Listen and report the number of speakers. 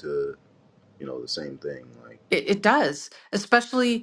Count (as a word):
two